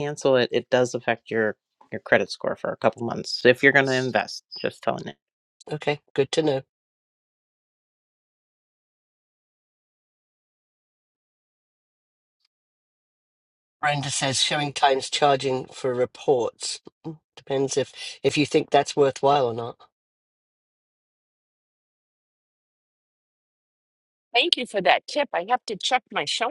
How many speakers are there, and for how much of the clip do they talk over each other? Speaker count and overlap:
3, no overlap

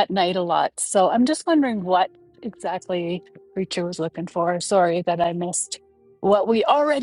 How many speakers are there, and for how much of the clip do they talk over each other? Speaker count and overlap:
1, no overlap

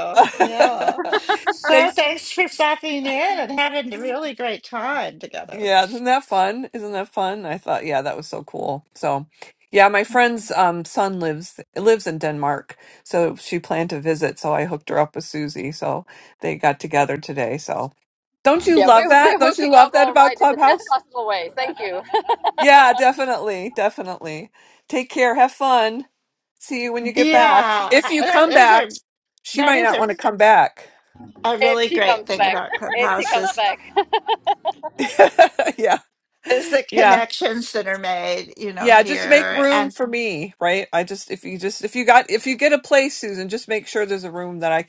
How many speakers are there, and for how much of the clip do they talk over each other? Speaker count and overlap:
3, about 18%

